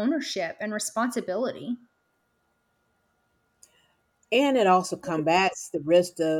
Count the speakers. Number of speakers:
2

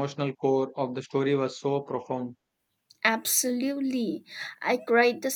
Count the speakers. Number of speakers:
2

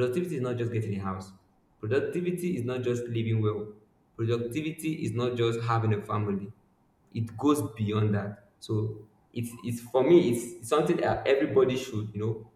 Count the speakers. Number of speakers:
1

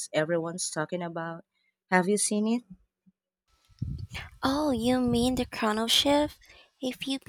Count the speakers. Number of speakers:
2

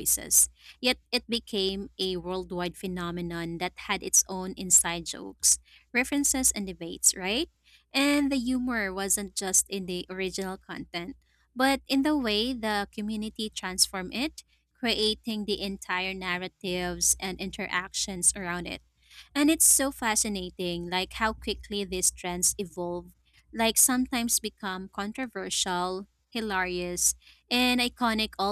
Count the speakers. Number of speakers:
1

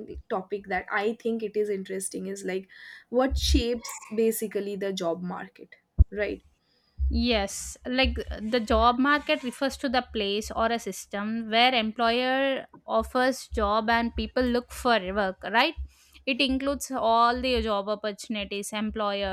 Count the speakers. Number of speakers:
2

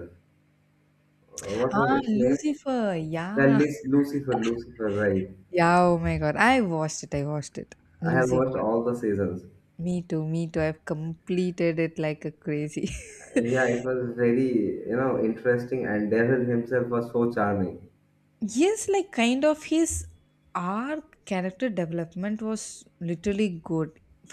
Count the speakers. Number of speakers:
2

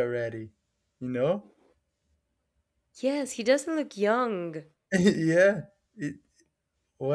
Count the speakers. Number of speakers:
2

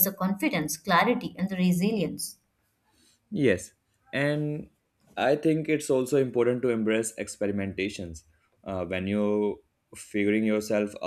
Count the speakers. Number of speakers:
2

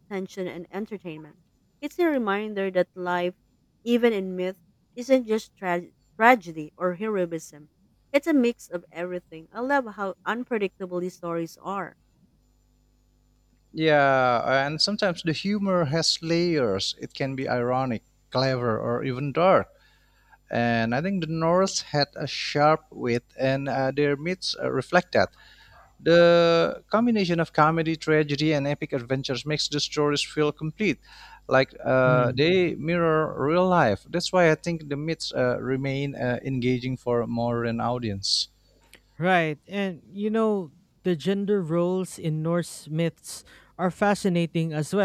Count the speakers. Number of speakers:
3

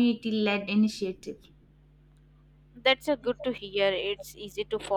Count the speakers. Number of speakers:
2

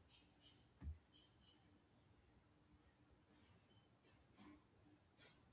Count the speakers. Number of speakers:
0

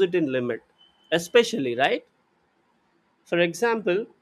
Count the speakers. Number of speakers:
1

